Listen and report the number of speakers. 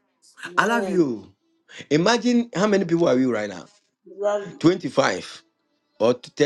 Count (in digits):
2